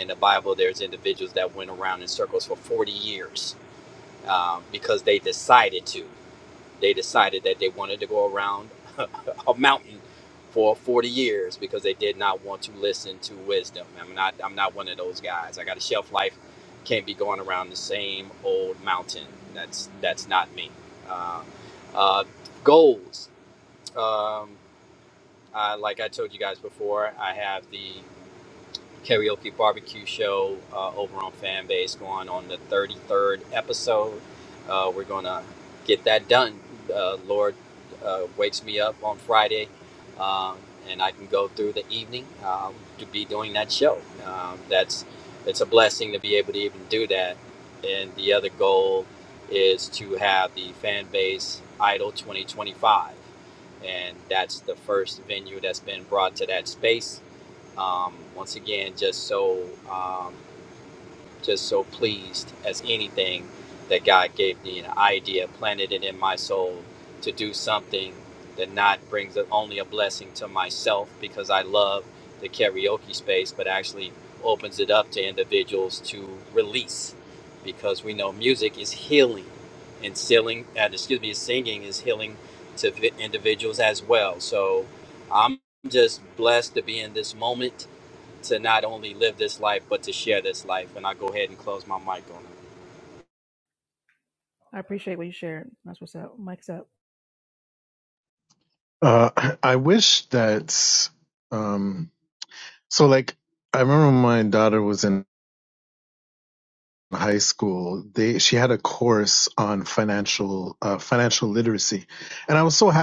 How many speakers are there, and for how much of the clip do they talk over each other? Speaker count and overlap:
3, no overlap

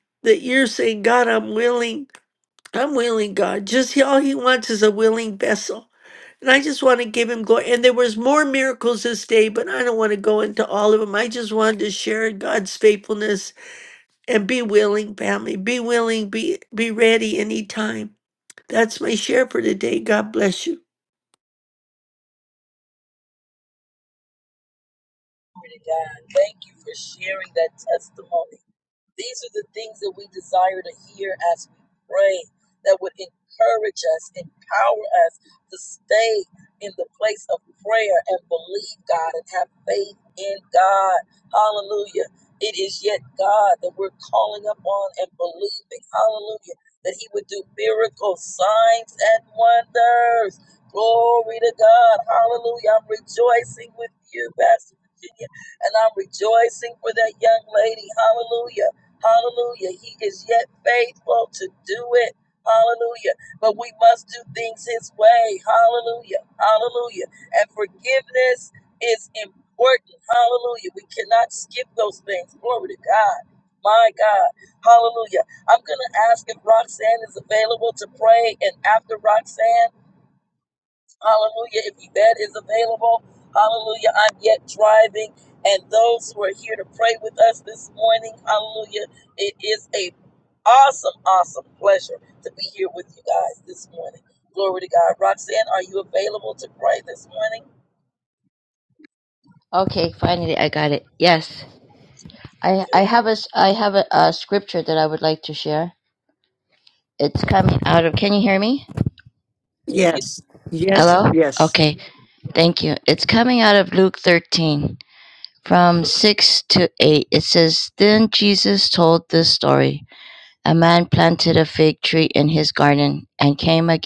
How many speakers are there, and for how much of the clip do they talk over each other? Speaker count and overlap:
3, about 1%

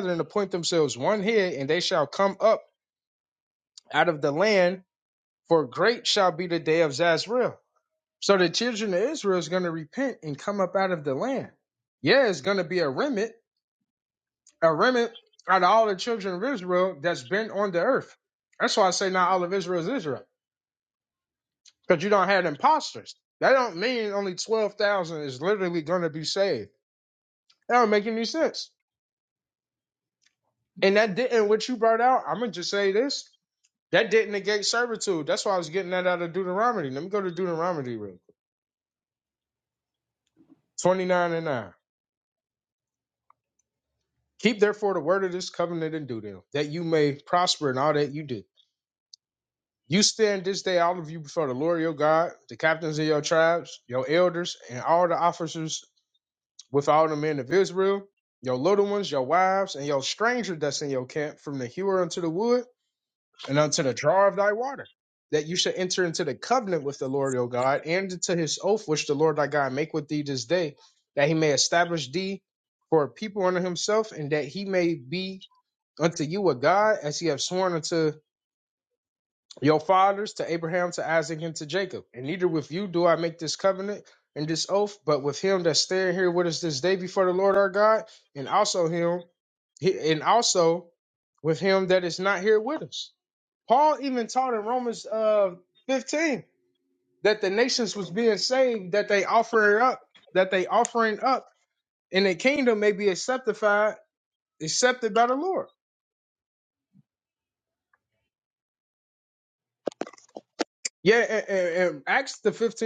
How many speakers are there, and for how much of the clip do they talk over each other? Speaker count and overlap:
1, no overlap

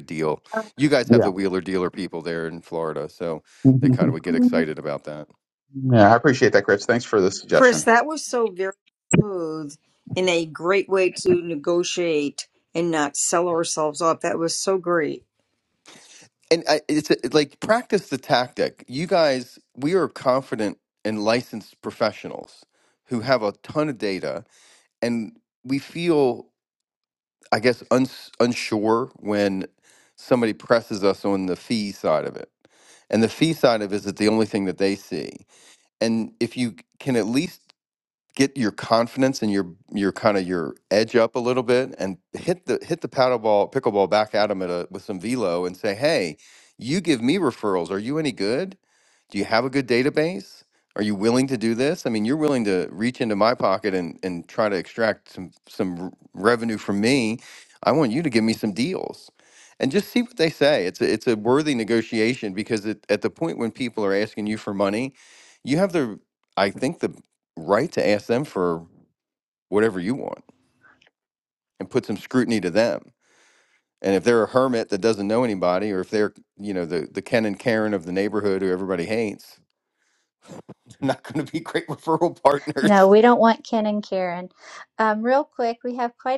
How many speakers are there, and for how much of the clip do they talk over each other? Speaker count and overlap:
4, about 1%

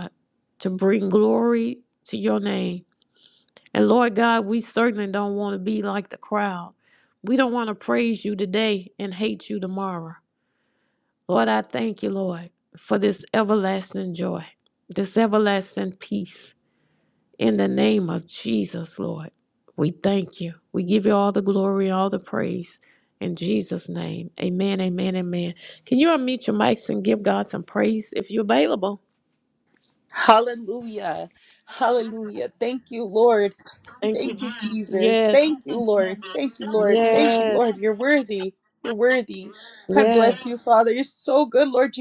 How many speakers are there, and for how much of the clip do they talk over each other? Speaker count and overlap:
2, about 6%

